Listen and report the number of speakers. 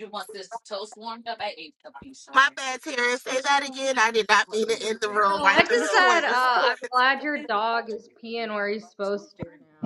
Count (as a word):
three